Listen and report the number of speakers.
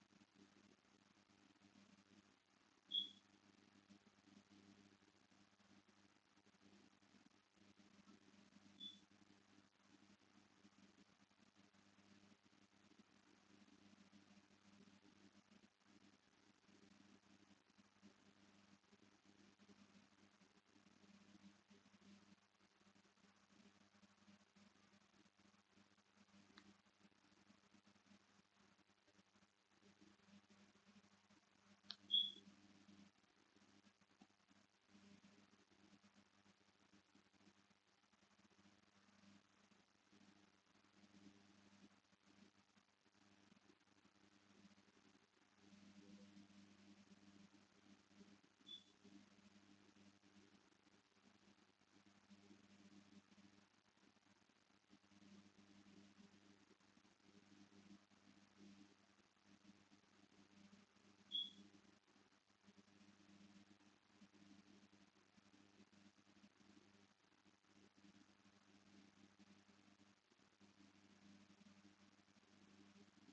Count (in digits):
0